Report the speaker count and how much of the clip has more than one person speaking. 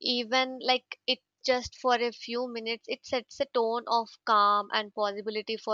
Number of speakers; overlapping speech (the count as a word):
one, no overlap